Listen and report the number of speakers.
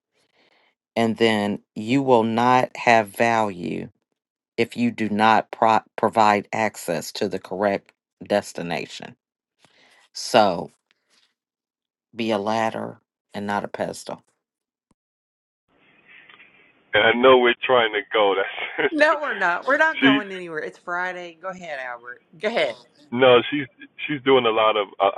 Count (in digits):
3